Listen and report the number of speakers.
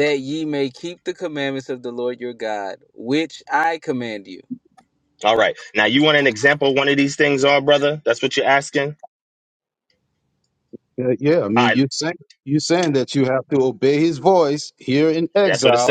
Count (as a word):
three